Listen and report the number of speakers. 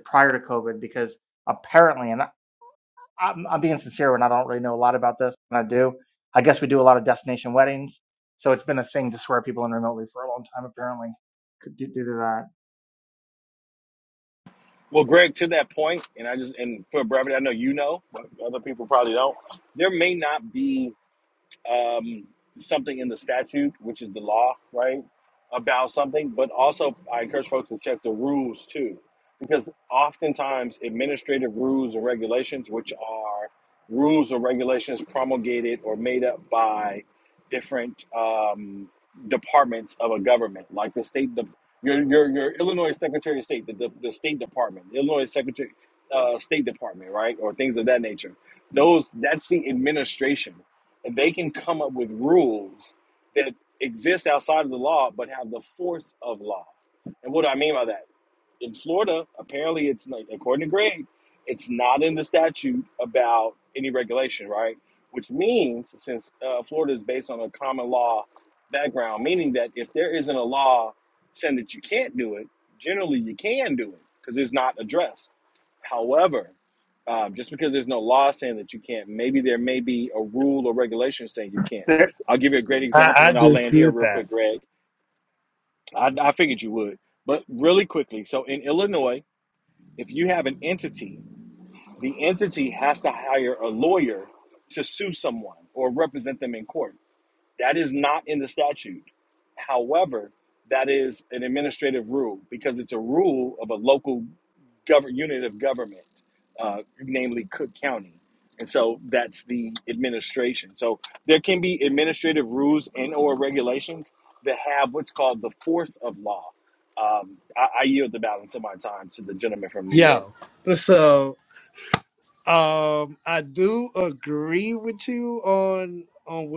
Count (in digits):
3